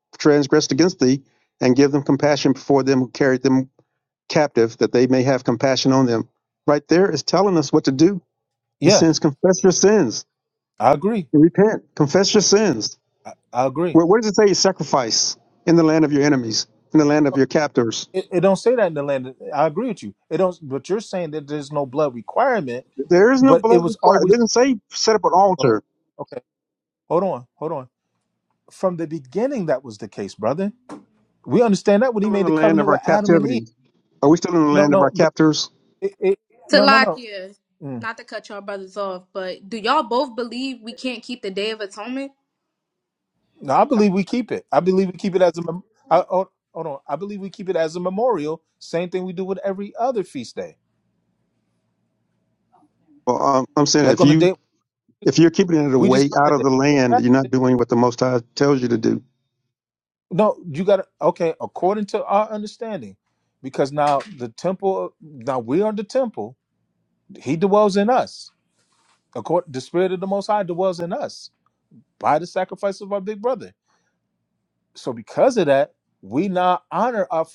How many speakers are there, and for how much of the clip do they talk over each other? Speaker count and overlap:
3, about 7%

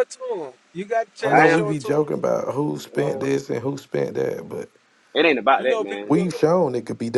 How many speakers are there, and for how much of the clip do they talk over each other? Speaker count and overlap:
3, about 27%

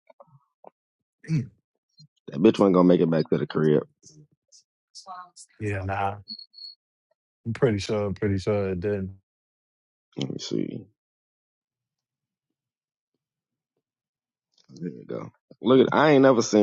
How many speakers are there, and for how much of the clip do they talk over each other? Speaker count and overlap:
2, no overlap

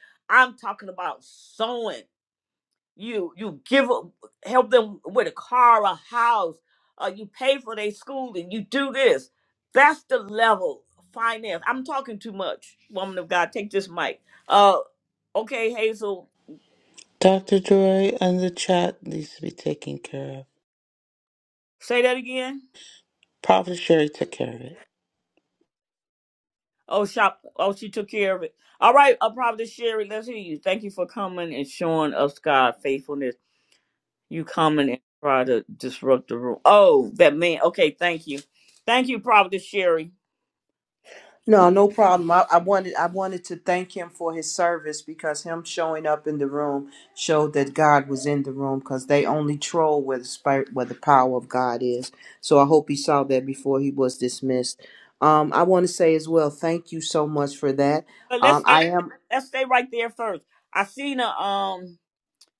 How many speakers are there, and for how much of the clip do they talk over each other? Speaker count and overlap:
3, about 1%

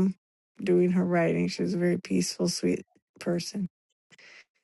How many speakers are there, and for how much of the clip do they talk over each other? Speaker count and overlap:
1, no overlap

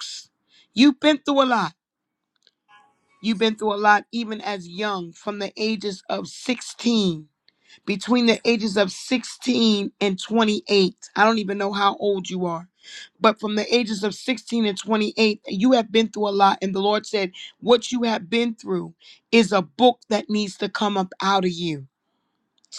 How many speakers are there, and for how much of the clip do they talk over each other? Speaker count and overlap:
1, no overlap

